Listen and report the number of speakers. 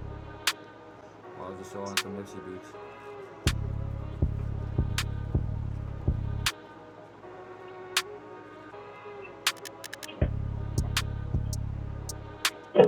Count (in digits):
1